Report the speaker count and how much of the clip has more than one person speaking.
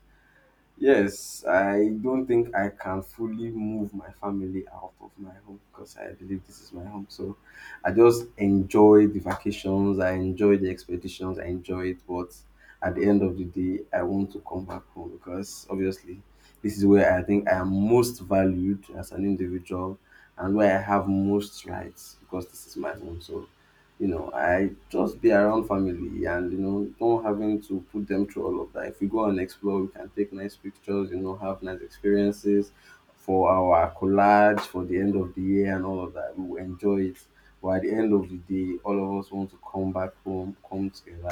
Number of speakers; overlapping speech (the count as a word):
one, no overlap